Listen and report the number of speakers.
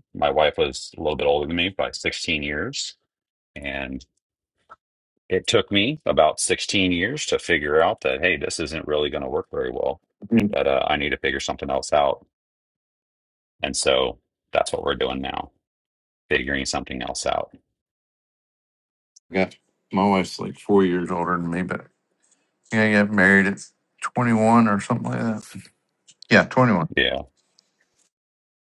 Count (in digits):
2